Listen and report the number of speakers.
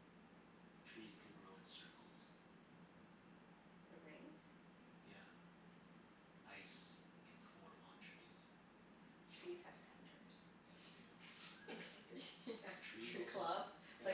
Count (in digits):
2